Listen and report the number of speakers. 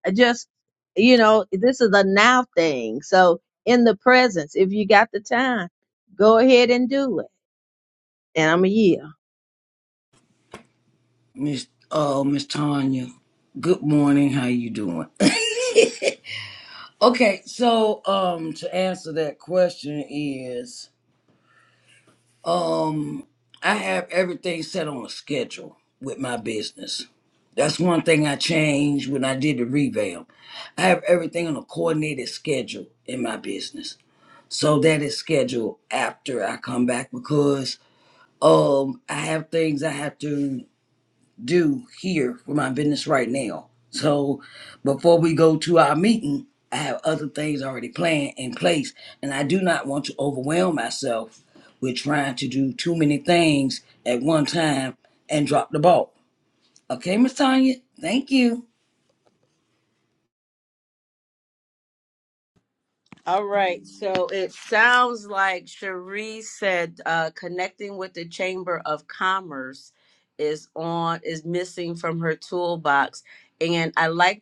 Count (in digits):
3